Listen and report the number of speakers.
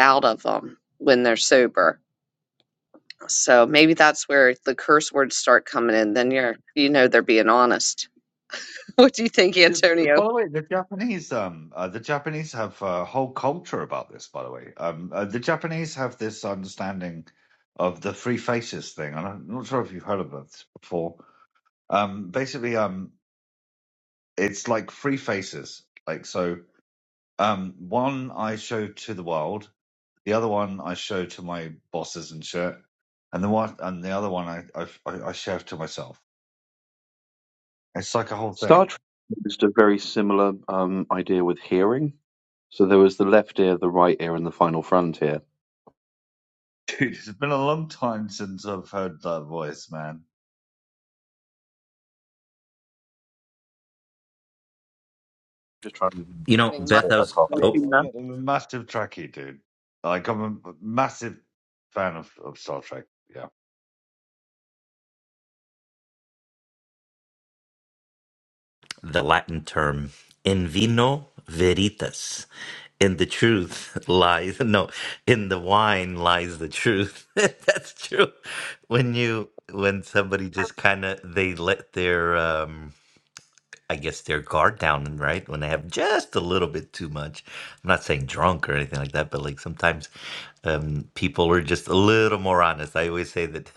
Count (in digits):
4